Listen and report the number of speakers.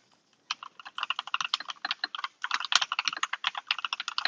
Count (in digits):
0